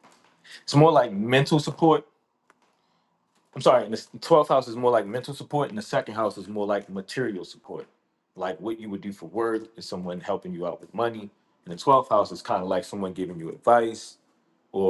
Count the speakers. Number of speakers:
one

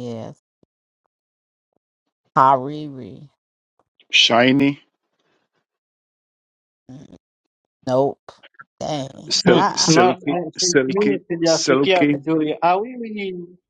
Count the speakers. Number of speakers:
three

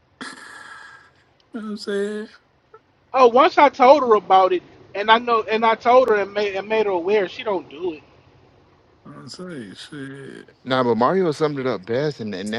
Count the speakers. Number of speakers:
three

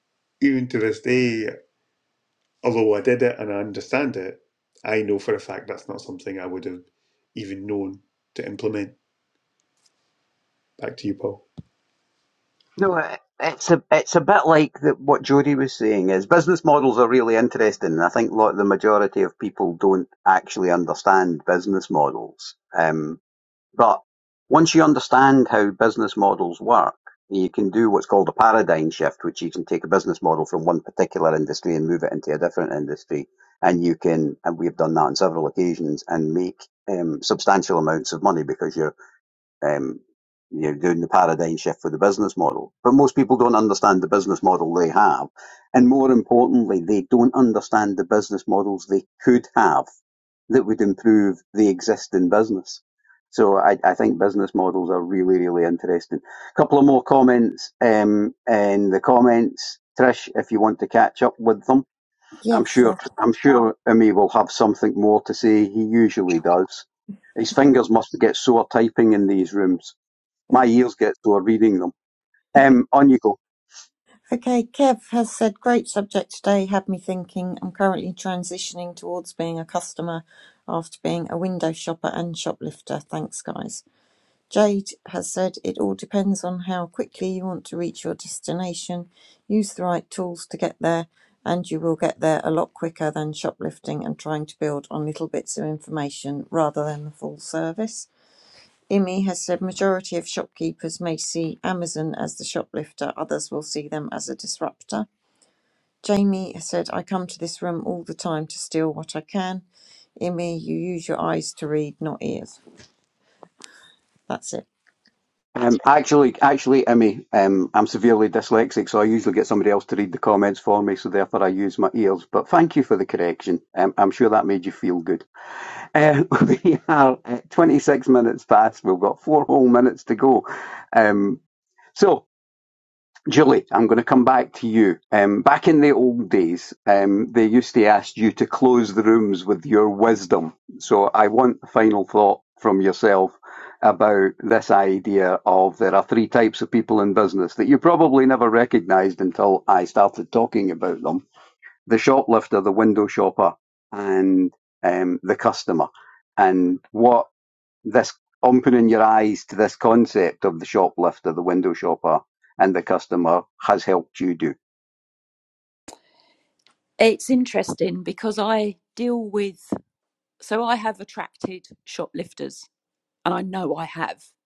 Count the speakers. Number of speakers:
four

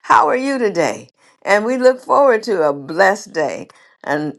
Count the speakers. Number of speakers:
one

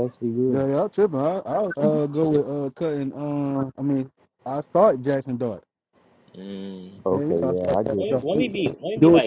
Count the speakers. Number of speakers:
three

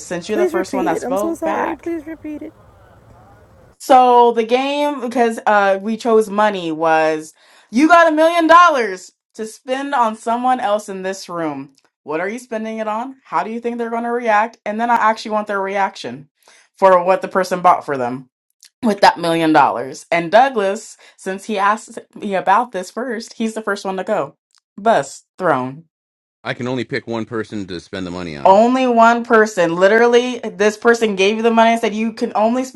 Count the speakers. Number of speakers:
three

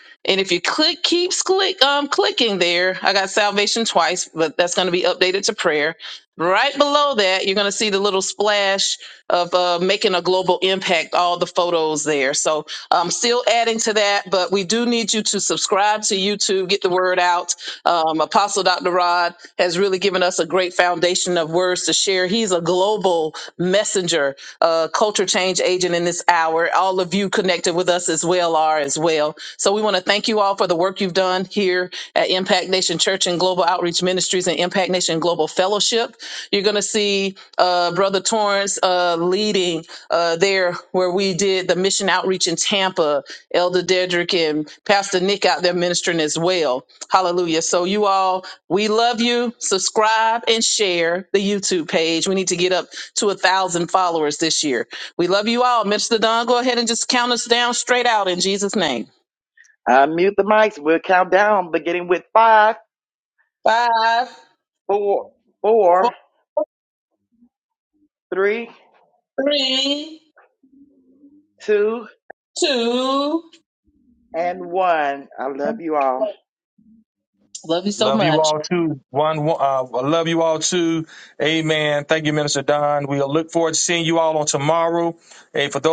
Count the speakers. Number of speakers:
three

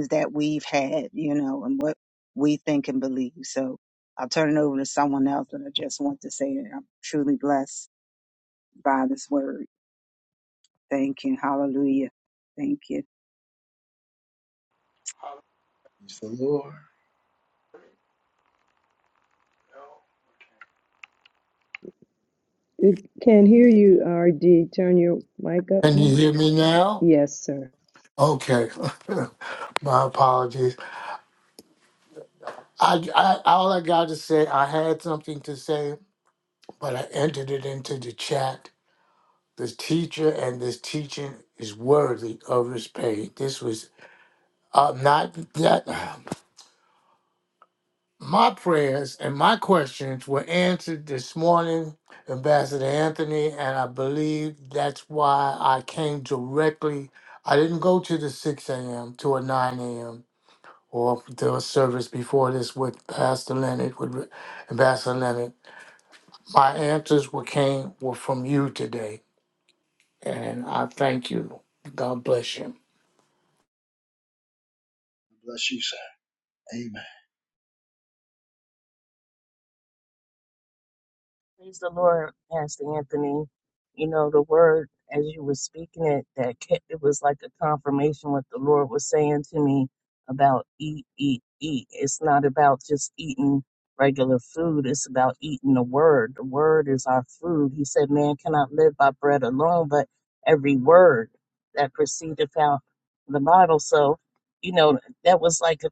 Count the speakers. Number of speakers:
five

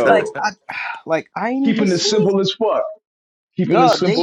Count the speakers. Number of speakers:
two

